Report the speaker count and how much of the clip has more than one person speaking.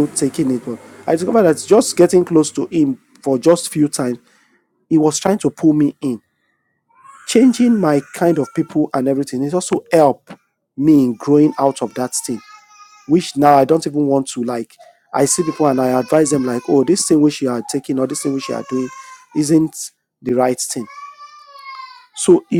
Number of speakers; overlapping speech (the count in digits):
1, no overlap